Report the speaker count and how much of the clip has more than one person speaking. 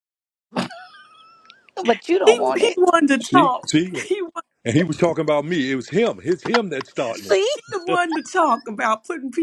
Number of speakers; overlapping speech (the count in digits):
3, about 13%